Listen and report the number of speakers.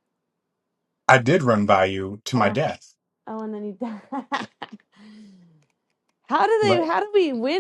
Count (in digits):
2